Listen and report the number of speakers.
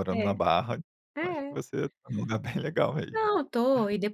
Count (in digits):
2